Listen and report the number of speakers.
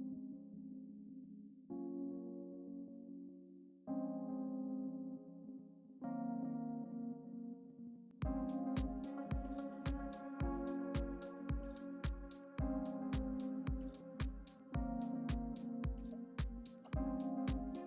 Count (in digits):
0